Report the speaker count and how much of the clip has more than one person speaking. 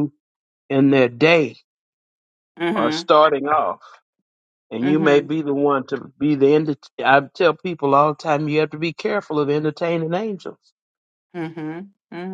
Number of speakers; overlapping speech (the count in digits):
2, about 6%